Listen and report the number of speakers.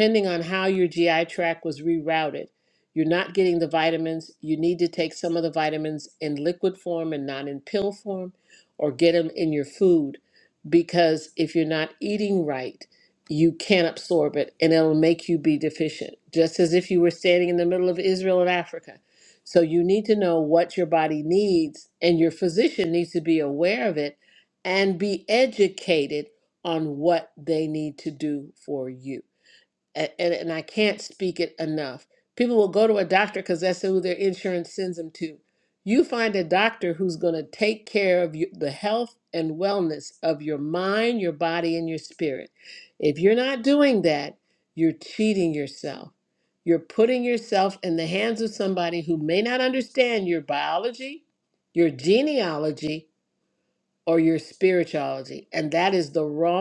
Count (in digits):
1